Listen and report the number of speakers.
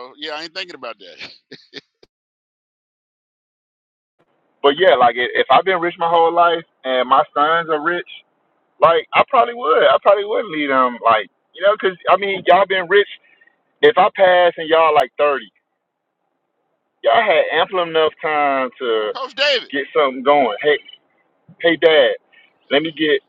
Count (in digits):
2